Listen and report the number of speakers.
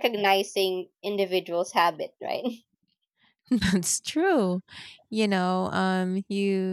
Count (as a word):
two